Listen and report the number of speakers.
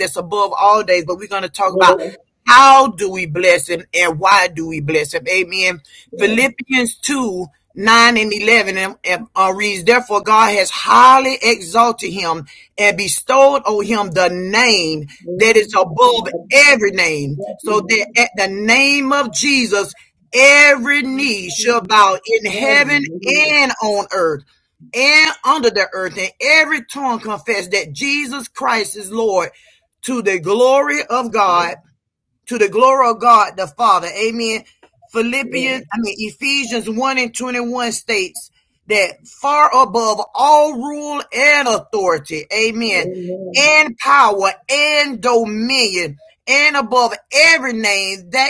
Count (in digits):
2